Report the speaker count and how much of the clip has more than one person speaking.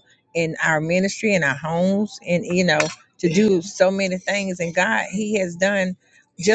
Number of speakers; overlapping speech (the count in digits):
1, no overlap